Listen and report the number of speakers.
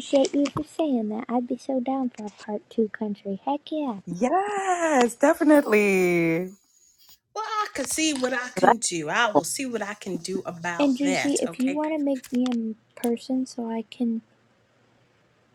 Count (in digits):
3